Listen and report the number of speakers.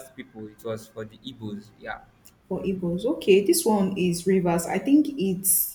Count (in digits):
2